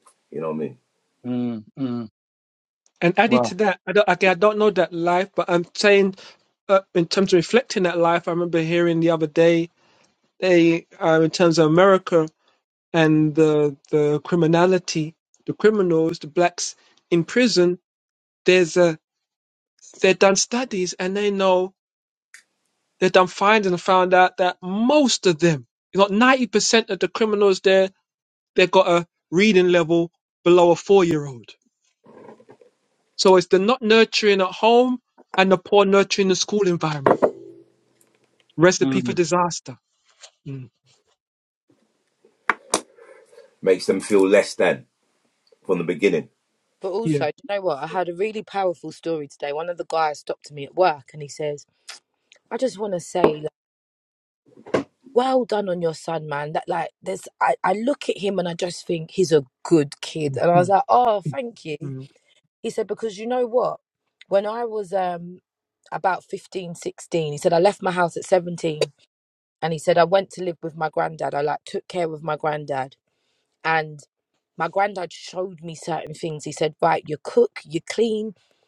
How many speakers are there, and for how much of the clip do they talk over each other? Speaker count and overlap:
4, about 1%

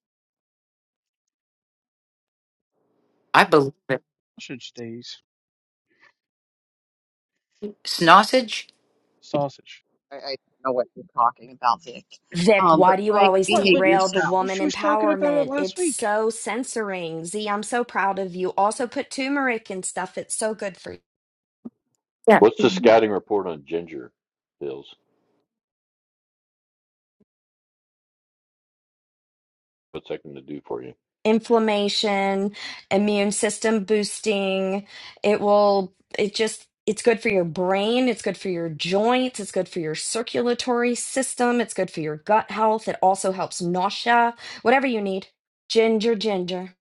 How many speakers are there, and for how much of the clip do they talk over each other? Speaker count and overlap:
5, about 7%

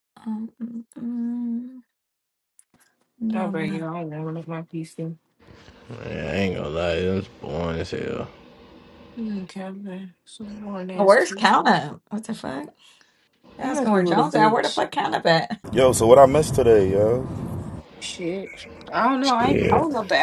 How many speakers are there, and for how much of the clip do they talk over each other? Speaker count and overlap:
4, about 15%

